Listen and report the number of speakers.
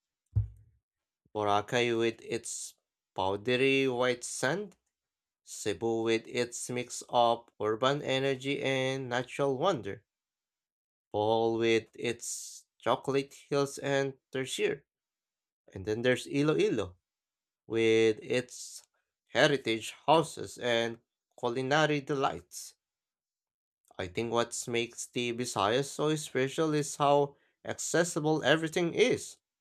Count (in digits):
1